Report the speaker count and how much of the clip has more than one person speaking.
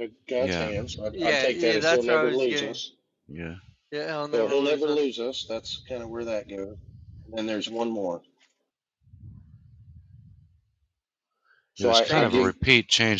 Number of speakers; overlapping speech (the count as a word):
three, about 25%